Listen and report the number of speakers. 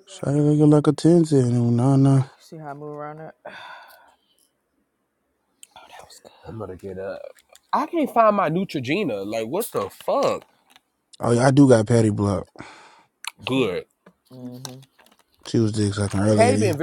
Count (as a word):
three